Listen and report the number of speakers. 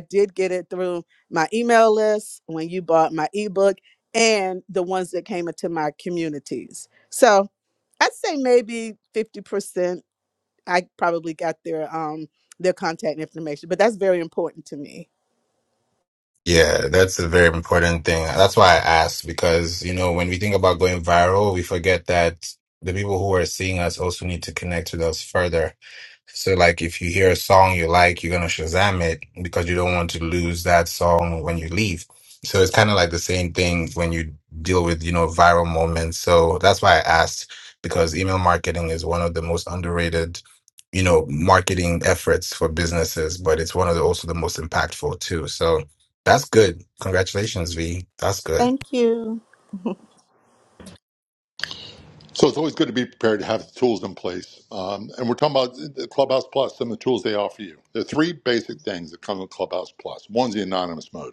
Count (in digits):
3